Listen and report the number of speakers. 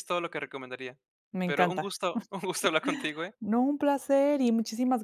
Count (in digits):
2